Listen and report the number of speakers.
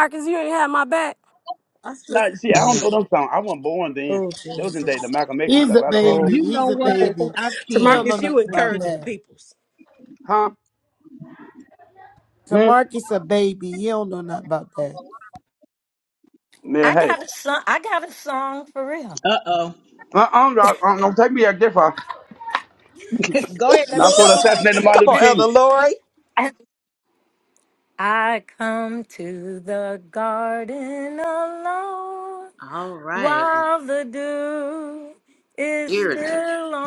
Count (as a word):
seven